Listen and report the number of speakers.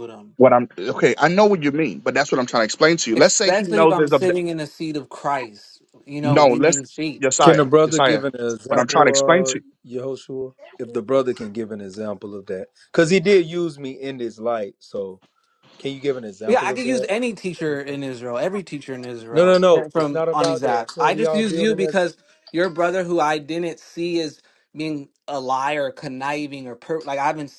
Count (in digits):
3